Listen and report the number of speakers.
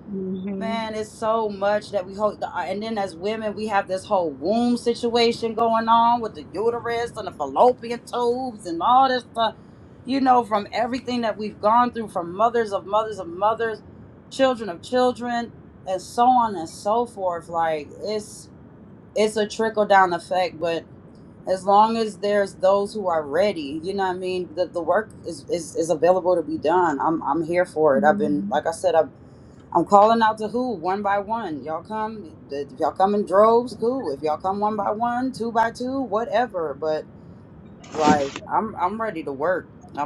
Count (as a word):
one